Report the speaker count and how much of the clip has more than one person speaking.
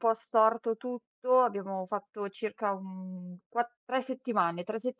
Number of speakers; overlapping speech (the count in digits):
1, no overlap